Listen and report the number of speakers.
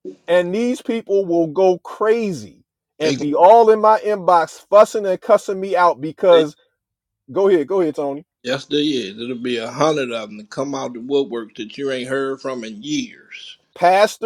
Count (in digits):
2